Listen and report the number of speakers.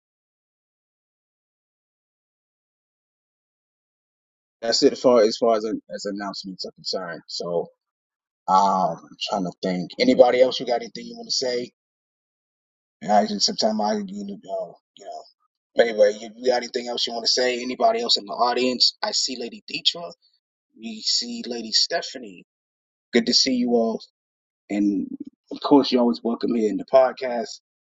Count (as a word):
one